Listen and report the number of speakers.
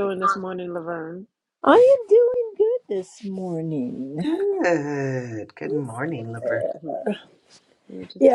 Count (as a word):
three